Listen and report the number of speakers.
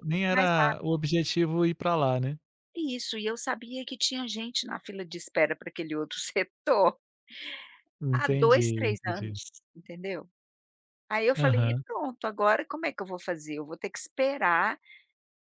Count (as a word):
two